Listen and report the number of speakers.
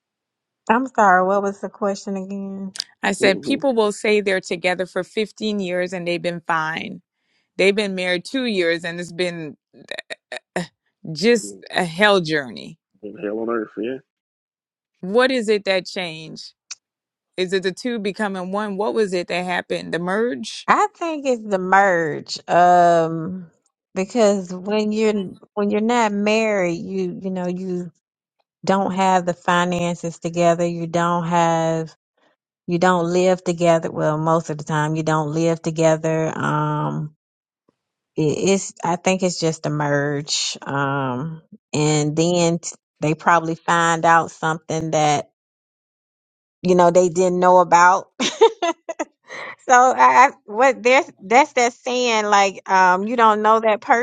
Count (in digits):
3